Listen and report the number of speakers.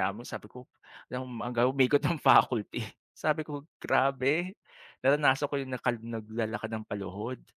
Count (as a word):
one